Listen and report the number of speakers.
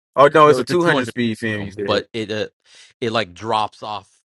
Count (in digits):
2